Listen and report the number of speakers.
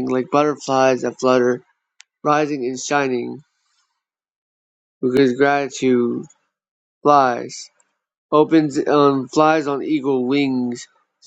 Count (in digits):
1